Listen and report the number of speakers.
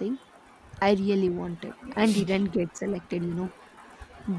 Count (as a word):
one